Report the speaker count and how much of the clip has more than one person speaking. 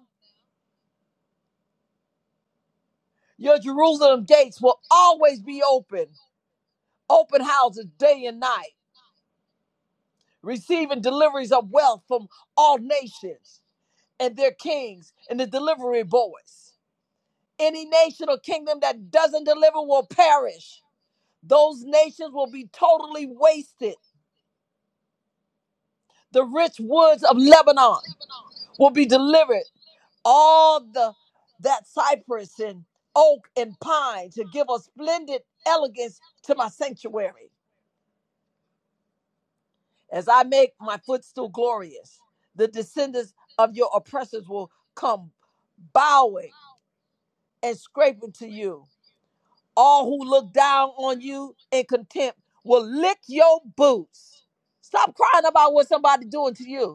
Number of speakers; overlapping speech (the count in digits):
1, no overlap